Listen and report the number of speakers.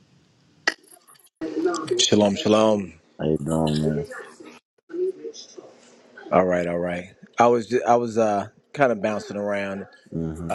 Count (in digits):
2